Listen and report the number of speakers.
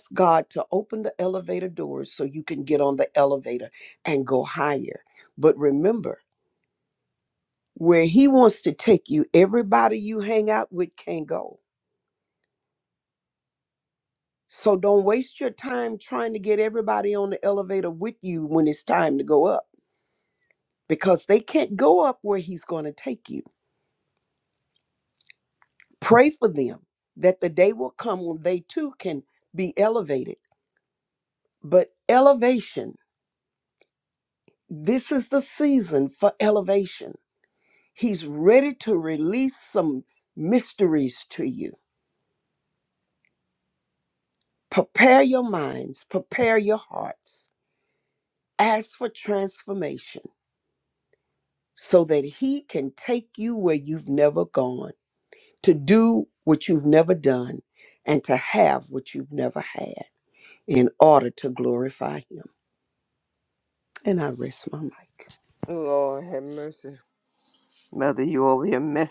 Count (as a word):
two